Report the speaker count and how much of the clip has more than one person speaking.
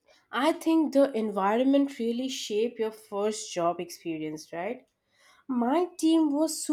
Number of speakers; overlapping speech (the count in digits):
1, no overlap